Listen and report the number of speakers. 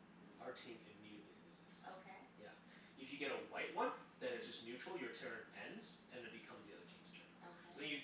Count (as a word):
two